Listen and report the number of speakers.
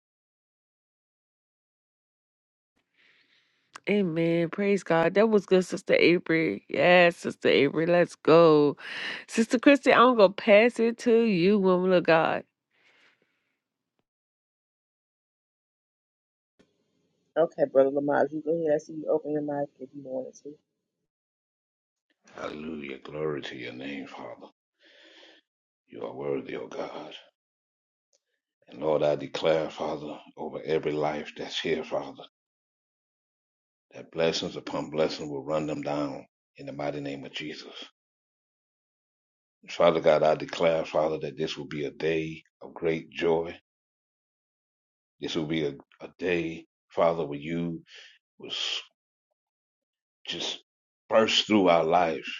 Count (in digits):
3